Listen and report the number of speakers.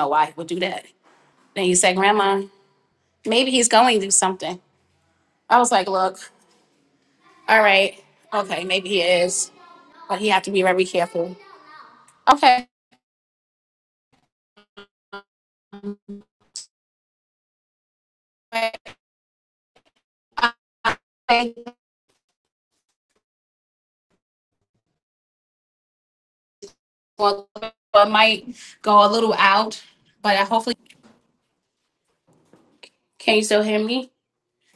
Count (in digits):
1